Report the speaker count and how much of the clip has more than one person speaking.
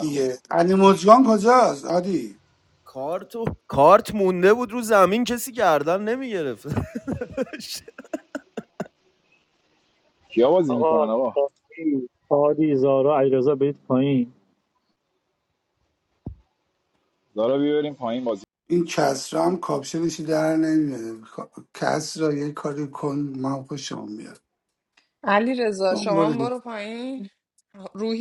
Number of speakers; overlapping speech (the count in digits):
5, about 5%